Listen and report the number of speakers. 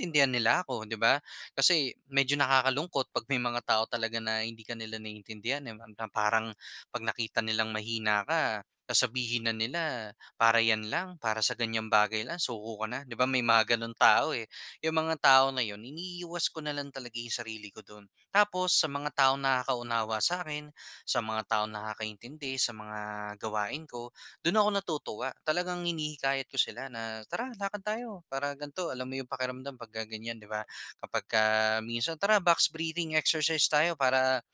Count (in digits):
1